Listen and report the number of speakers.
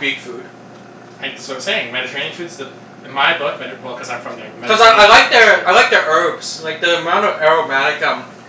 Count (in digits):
2